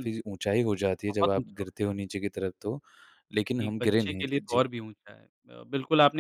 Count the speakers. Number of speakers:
two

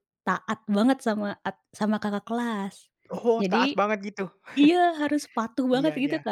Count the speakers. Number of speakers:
two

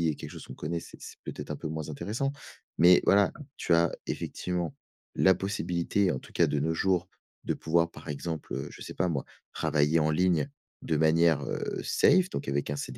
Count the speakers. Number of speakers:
one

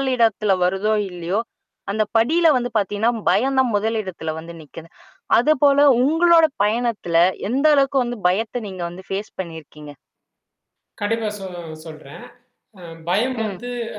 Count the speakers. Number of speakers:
two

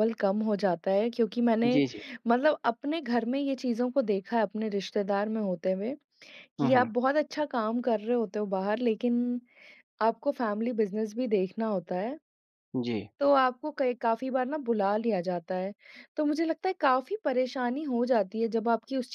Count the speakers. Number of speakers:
two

